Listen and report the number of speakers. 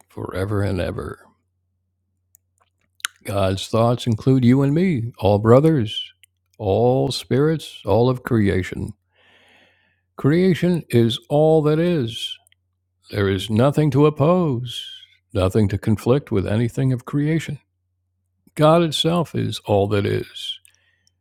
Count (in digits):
1